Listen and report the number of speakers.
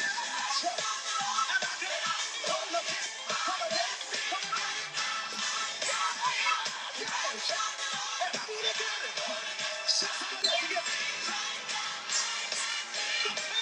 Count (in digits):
0